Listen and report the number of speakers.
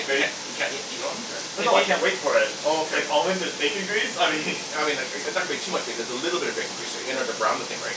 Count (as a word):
two